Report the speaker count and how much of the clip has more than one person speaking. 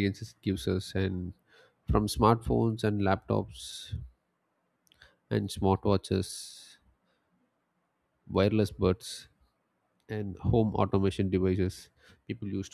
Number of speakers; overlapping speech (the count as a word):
one, no overlap